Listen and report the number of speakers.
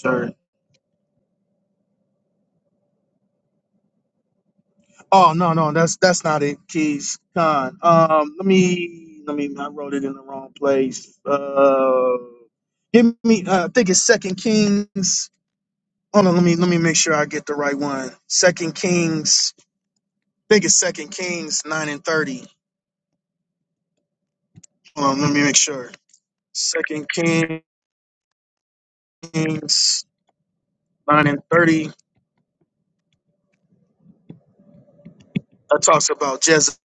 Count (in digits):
1